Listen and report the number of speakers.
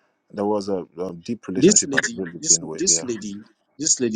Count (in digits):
2